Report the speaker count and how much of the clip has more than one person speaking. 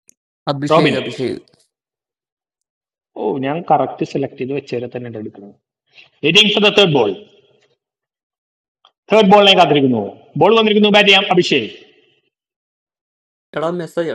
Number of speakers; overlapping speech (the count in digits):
2, about 2%